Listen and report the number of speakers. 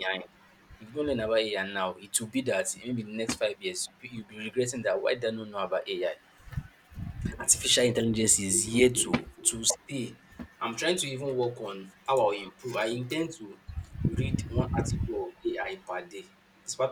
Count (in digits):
1